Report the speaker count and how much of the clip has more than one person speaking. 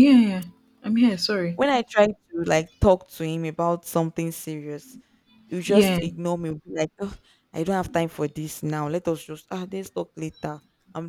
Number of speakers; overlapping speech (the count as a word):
two, about 3%